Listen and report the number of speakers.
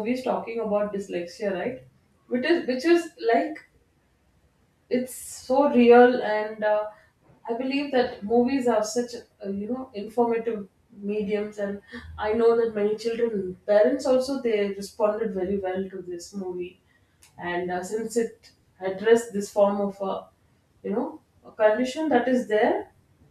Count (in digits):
1